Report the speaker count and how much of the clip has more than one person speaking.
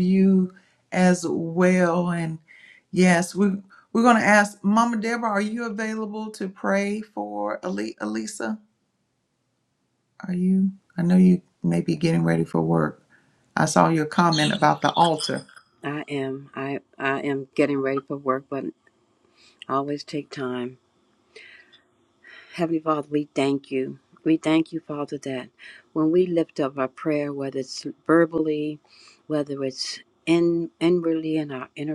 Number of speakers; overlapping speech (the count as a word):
two, no overlap